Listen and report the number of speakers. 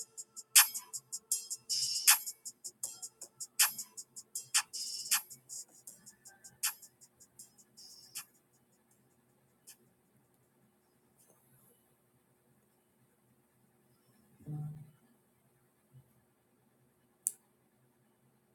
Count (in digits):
0